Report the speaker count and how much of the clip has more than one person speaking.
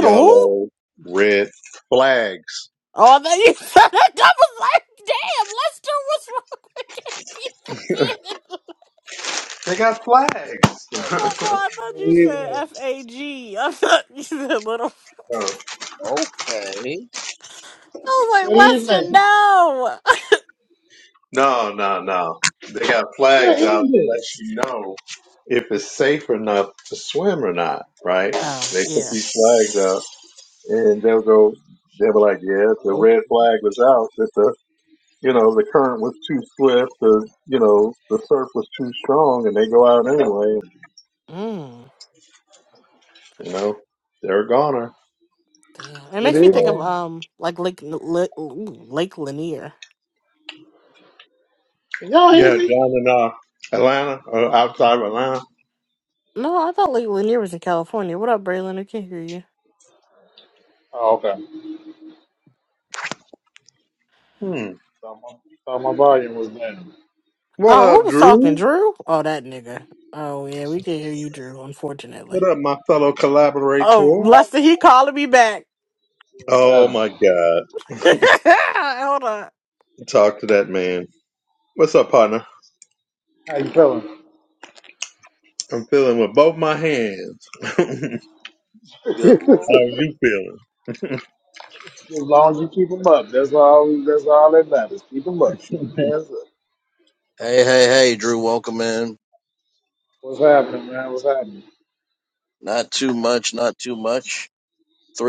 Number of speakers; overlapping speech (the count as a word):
four, about 7%